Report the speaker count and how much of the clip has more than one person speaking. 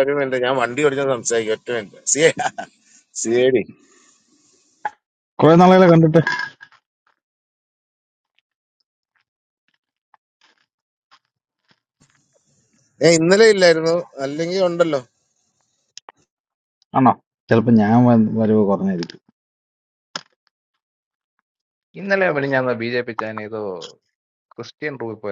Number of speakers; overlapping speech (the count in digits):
3, no overlap